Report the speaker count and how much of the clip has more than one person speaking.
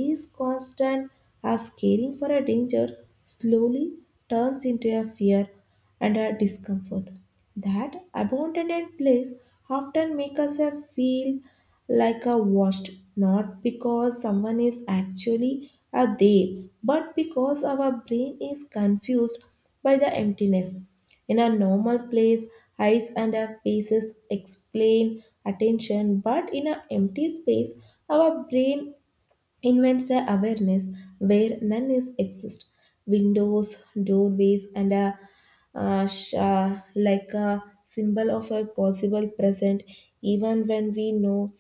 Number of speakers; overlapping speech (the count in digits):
1, no overlap